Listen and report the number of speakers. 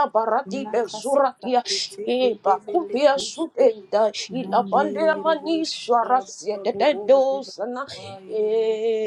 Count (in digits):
2